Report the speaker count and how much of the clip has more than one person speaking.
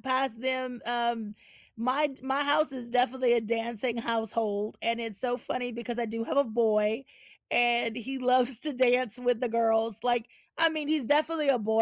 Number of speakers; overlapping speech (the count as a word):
one, no overlap